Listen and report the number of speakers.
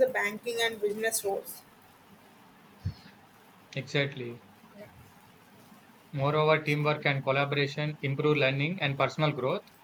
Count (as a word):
two